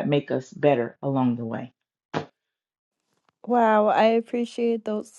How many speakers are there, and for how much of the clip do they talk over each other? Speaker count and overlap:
two, no overlap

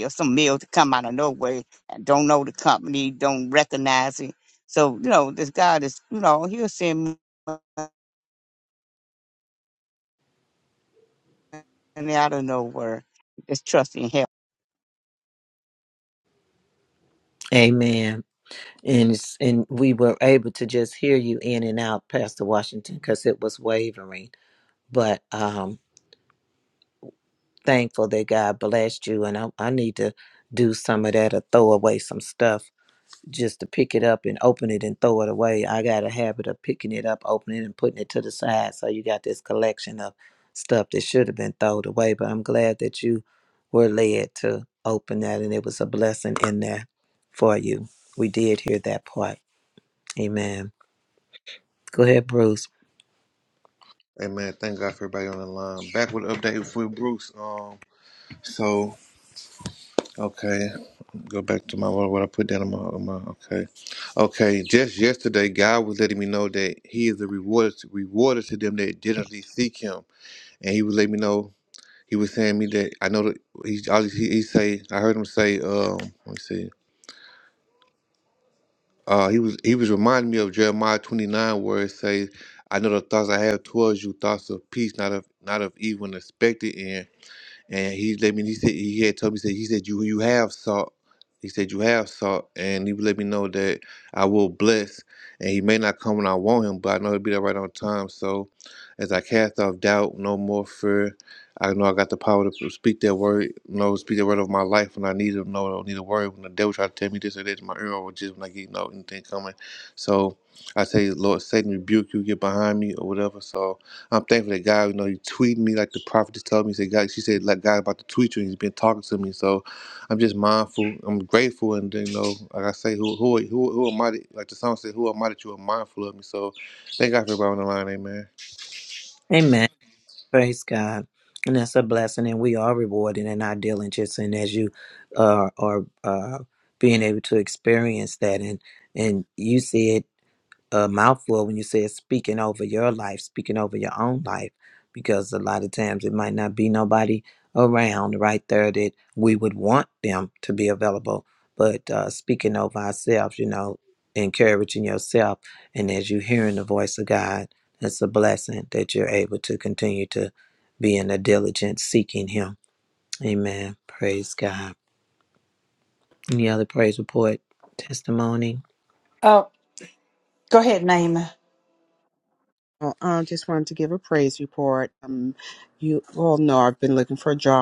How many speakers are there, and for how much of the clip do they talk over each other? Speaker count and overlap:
five, no overlap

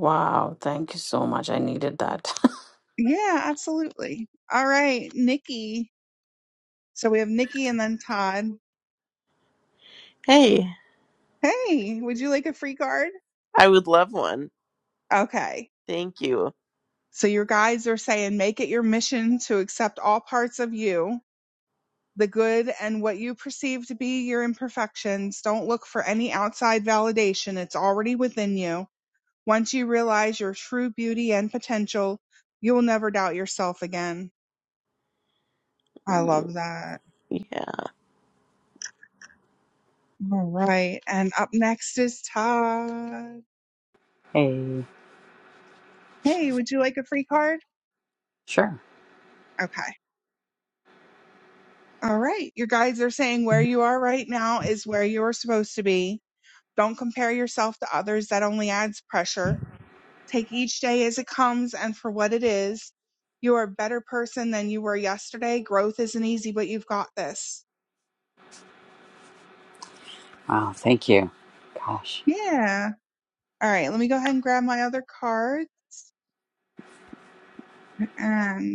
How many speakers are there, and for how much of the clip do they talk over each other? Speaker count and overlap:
four, about 1%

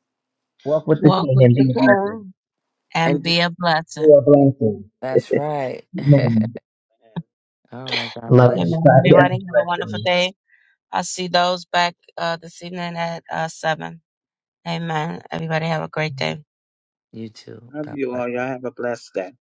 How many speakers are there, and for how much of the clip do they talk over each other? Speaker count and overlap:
four, about 19%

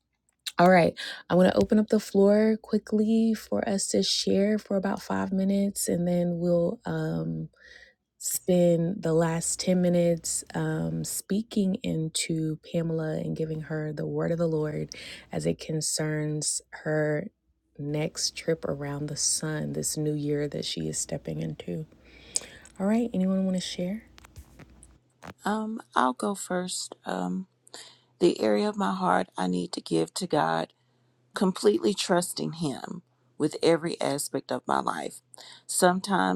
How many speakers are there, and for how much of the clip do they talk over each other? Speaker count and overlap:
two, no overlap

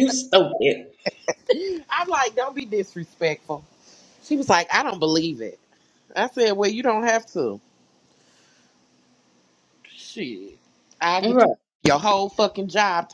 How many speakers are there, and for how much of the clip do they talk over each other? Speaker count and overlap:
two, about 2%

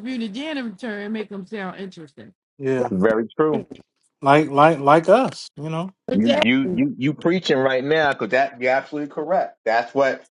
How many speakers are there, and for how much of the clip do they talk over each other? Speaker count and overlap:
three, about 7%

